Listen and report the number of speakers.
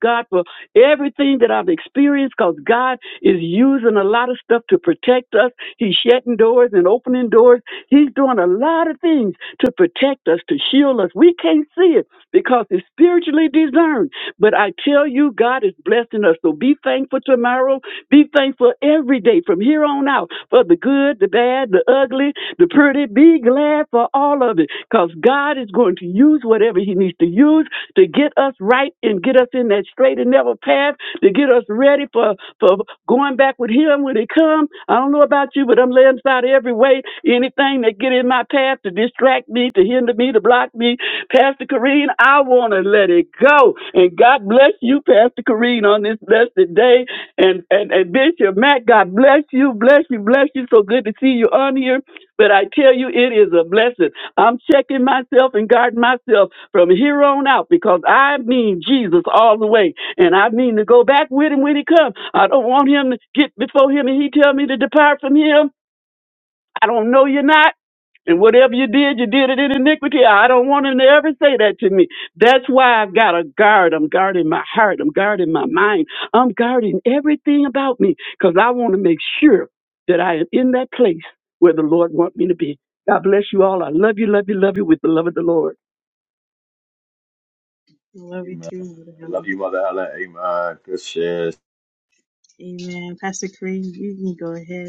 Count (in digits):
3